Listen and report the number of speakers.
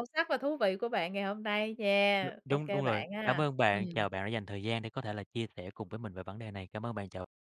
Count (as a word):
two